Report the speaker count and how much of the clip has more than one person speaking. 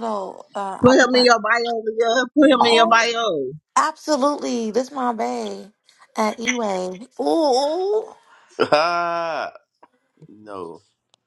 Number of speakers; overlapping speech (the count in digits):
3, about 8%